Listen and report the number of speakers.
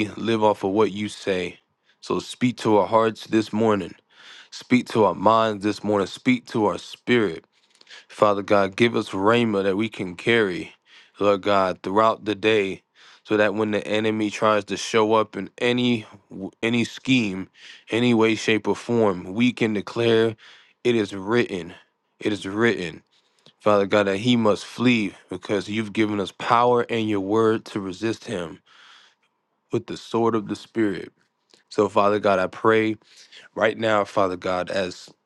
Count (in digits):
1